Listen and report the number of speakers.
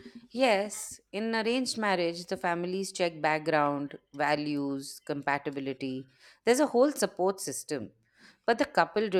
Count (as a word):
one